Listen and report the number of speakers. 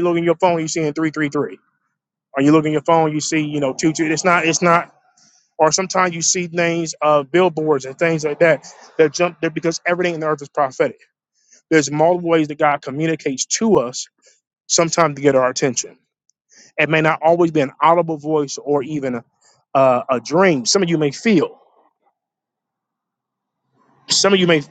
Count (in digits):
1